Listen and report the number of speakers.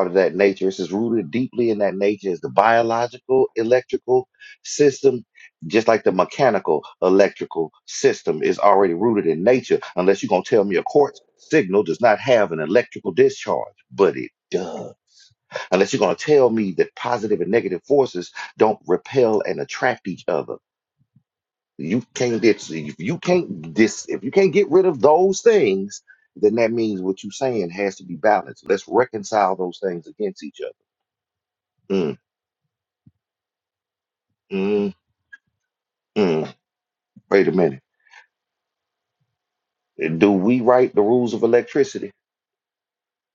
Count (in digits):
1